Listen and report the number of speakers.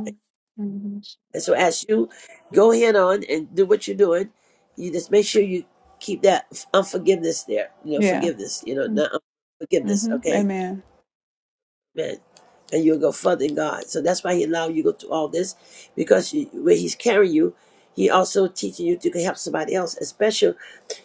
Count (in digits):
2